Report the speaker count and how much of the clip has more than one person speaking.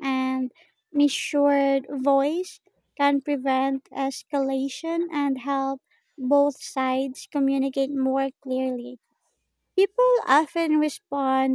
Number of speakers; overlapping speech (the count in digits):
1, no overlap